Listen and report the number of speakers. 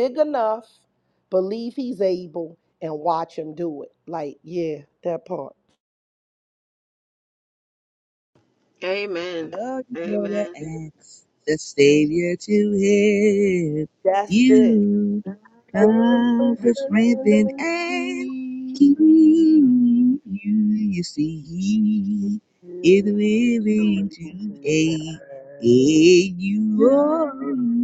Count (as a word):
three